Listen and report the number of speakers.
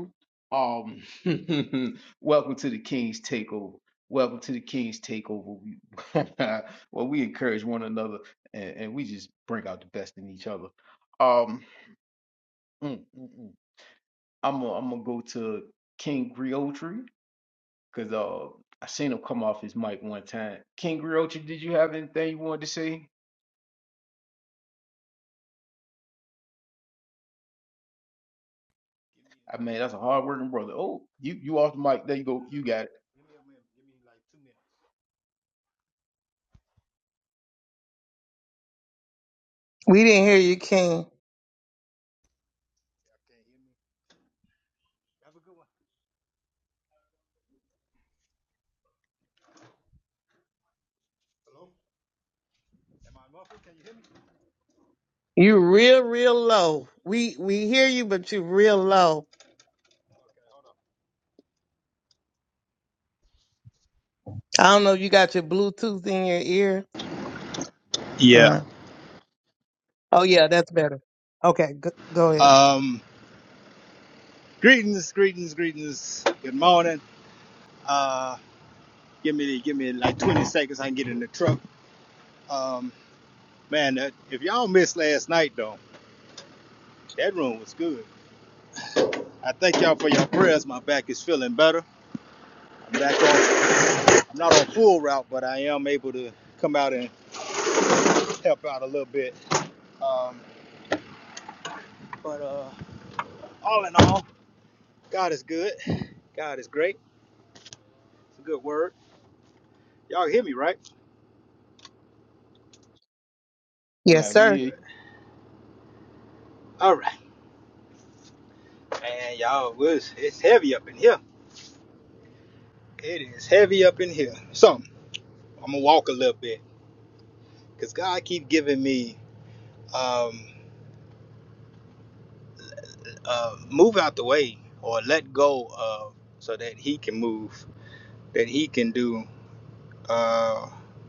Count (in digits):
3